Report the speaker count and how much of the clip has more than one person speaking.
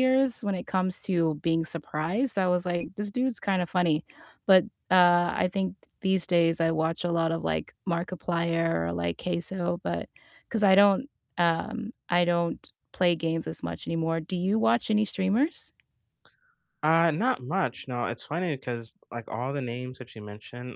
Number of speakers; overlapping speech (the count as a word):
two, no overlap